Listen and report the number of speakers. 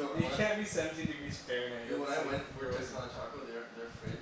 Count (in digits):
2